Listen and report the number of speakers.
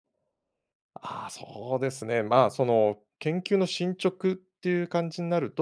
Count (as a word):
one